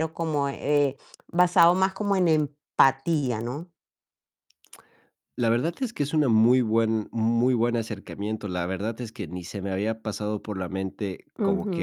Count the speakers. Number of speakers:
2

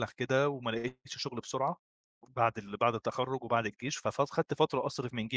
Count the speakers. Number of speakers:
1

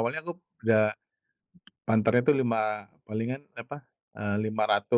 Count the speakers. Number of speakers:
1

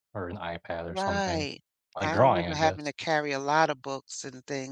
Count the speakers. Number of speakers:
2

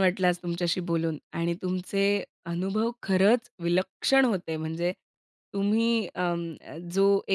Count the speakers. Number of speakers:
1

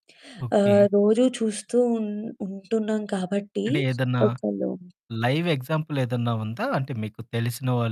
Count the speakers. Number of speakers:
2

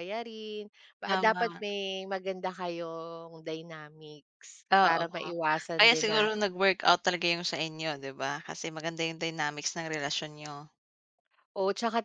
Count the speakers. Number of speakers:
2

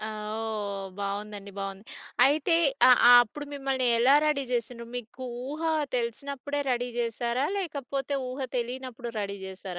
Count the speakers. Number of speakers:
1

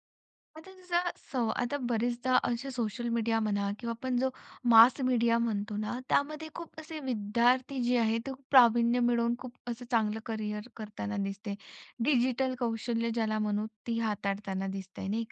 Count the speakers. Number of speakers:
1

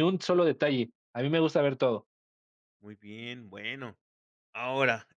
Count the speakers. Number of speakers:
2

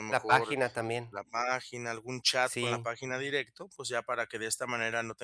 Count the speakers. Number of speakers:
2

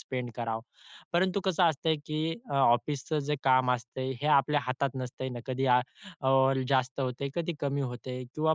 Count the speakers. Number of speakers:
1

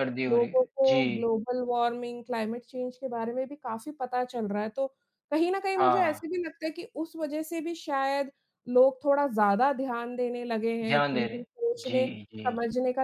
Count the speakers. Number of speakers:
2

